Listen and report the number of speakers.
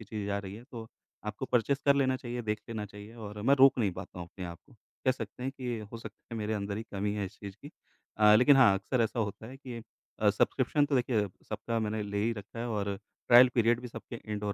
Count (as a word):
one